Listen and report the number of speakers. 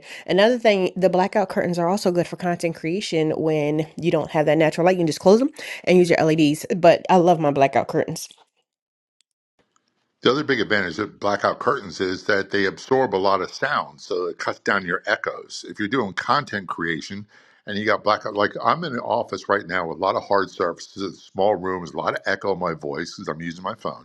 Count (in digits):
2